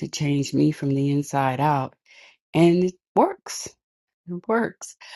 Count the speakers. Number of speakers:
one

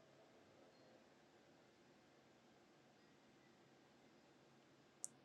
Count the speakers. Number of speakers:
zero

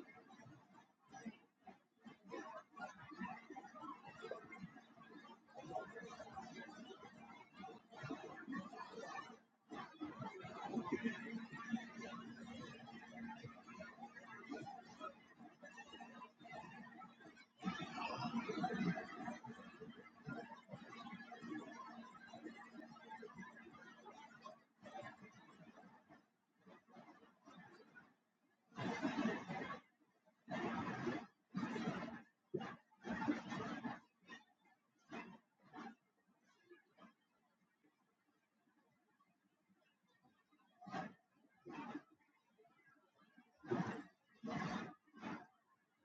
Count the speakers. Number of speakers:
zero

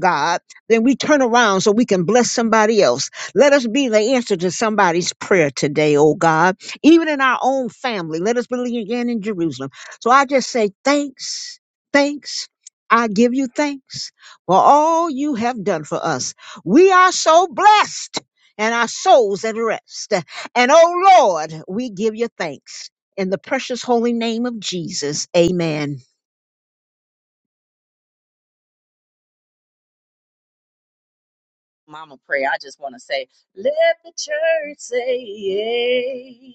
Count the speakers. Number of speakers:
two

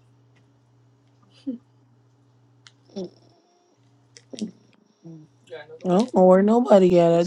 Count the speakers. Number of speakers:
one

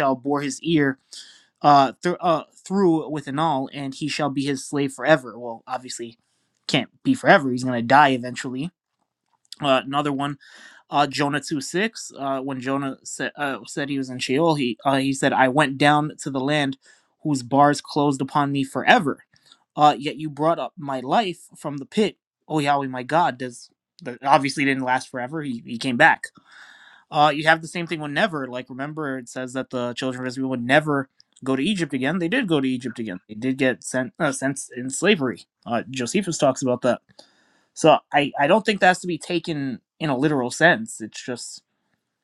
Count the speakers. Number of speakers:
one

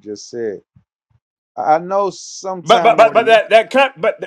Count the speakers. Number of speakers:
two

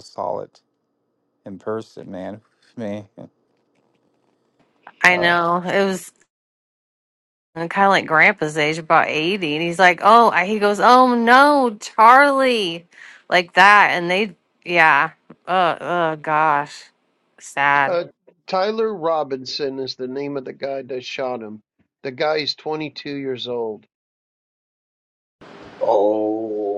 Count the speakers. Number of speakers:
four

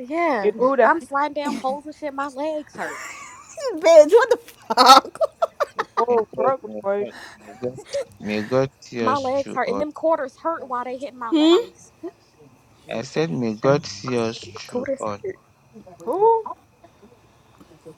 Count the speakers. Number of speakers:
four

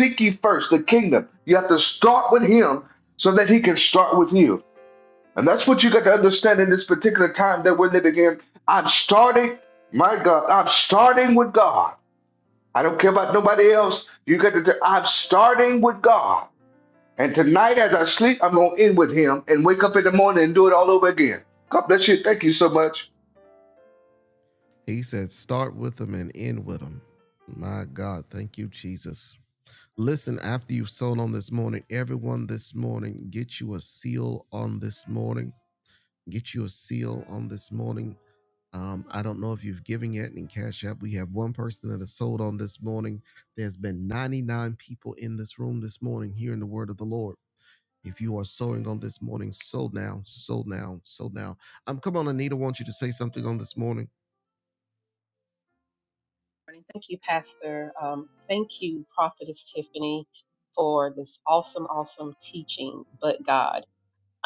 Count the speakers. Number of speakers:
three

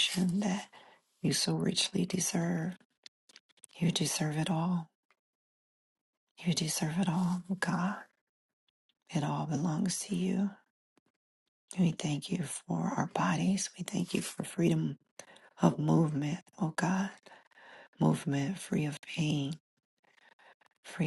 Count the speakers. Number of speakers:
one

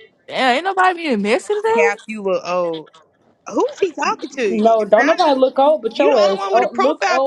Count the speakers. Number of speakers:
three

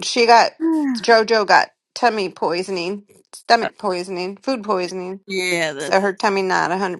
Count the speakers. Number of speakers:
two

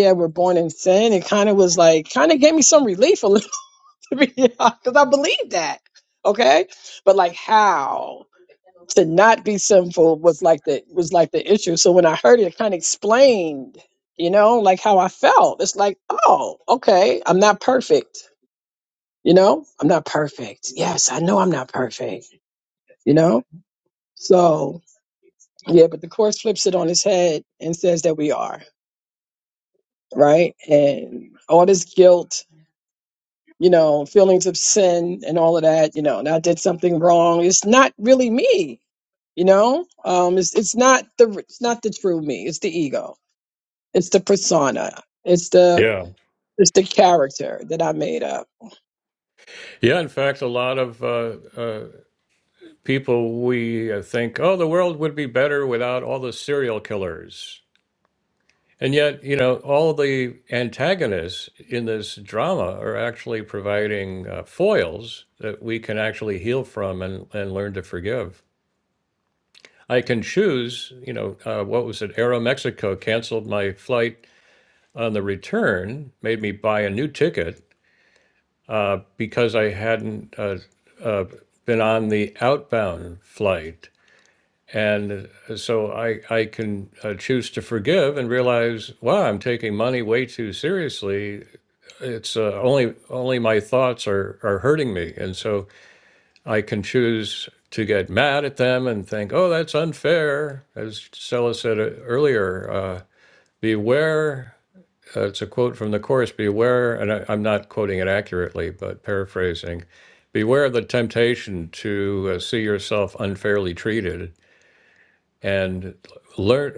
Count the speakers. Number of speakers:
two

